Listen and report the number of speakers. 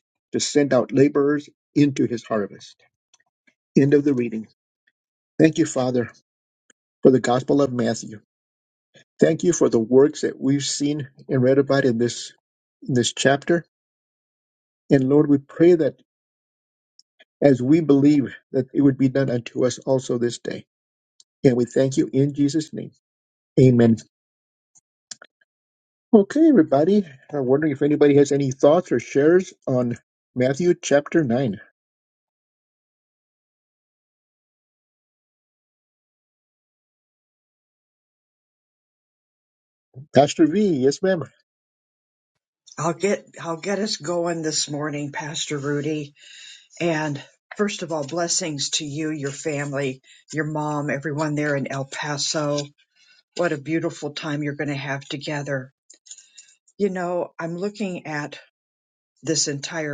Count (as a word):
two